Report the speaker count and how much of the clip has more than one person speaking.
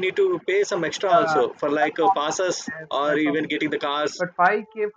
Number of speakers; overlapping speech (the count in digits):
2, about 32%